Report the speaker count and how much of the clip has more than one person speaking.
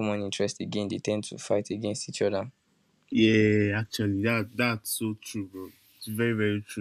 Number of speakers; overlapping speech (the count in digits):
2, no overlap